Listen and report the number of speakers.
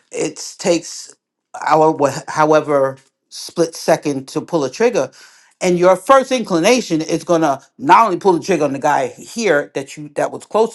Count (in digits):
1